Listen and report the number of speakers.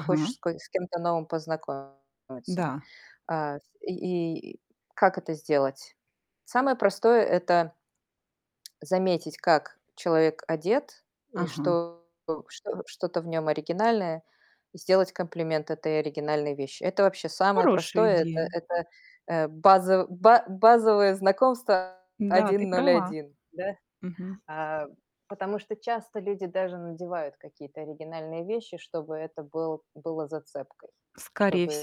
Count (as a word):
two